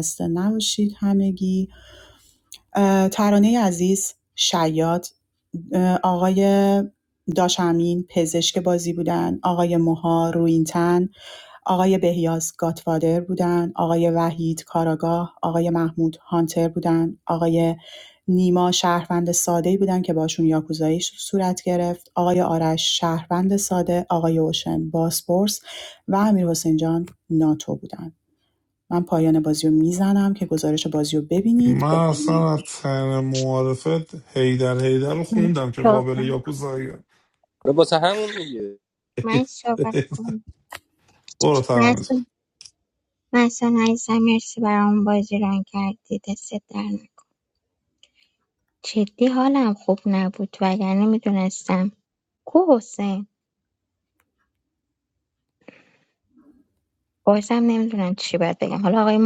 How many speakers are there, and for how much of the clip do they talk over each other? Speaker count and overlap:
4, about 2%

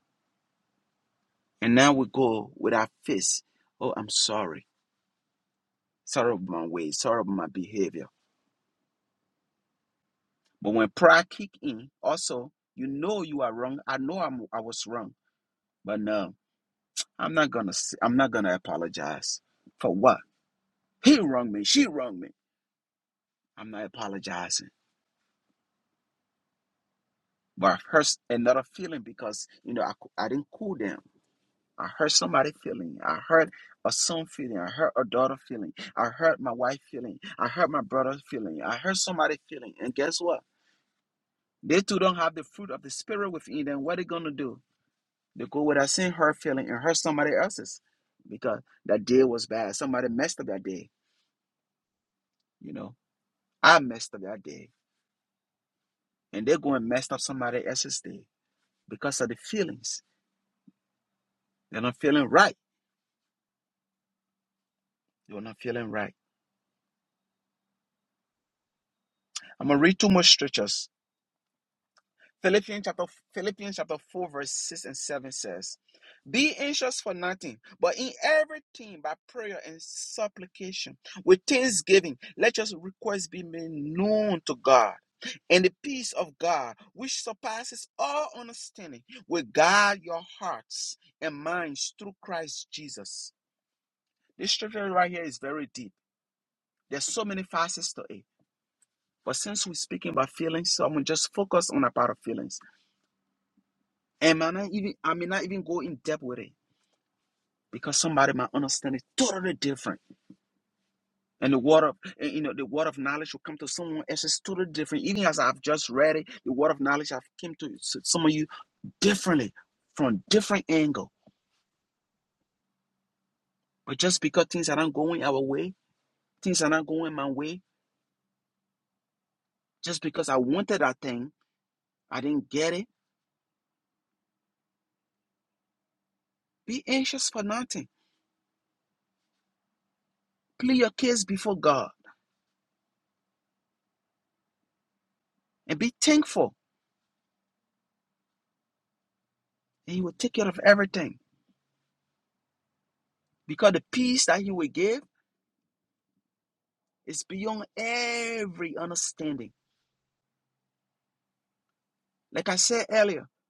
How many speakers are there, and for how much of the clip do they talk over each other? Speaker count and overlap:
1, no overlap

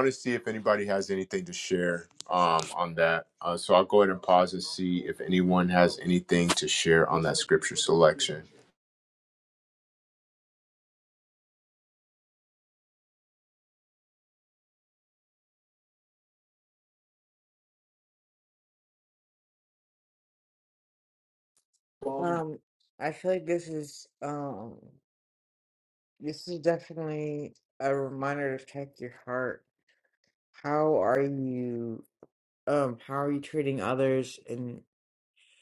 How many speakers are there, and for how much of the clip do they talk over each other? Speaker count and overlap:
2, no overlap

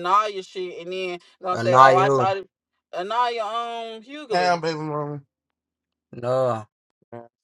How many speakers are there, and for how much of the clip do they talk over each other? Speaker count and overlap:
3, about 13%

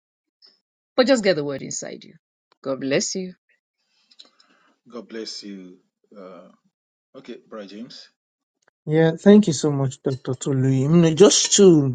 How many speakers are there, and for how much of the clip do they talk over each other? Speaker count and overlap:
3, no overlap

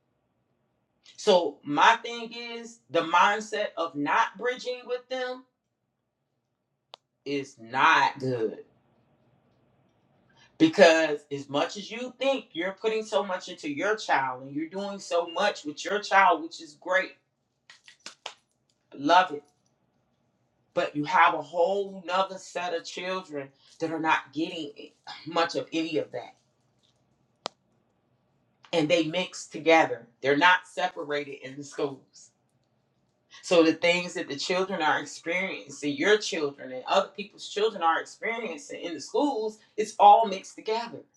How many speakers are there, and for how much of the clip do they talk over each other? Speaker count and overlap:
1, no overlap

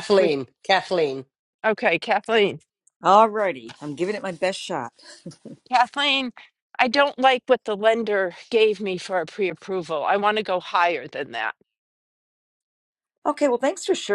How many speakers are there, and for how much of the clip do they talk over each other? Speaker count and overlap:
3, about 3%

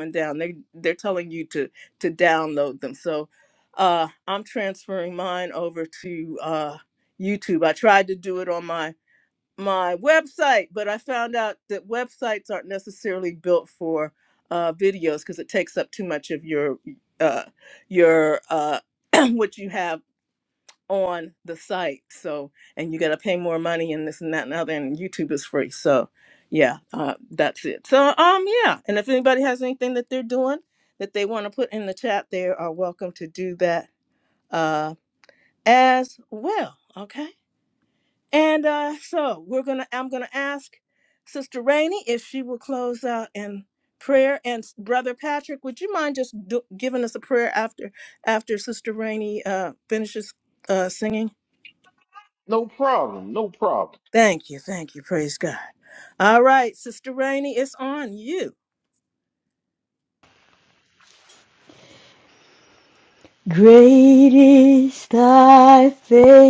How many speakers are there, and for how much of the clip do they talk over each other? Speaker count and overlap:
3, no overlap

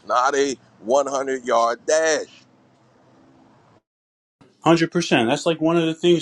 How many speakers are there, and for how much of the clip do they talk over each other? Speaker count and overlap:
2, no overlap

